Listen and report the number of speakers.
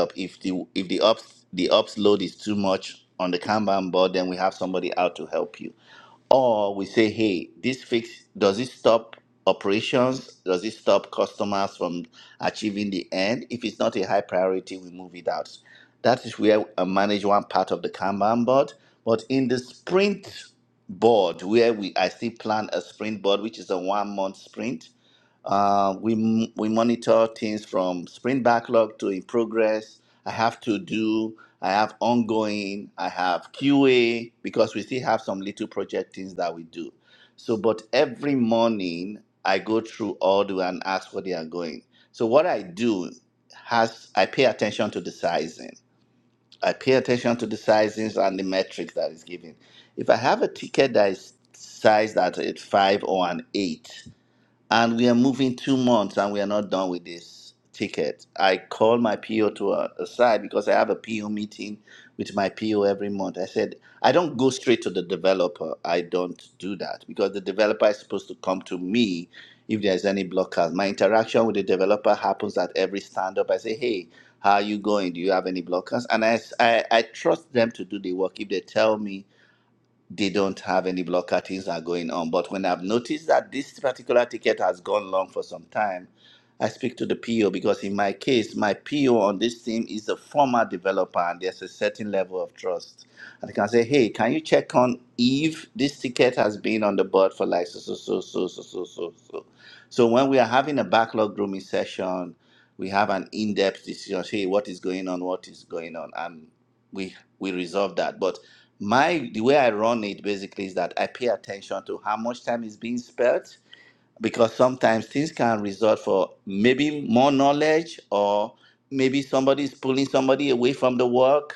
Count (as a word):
one